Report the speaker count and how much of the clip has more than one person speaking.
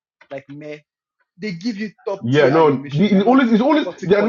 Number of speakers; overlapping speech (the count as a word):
two, about 37%